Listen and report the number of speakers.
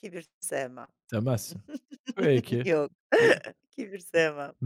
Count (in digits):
2